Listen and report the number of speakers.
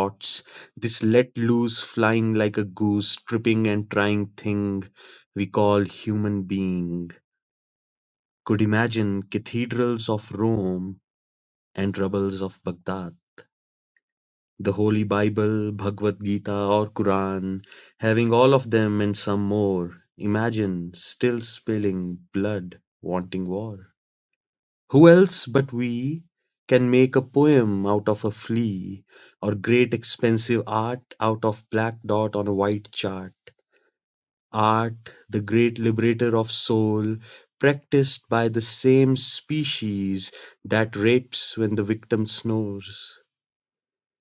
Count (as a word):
one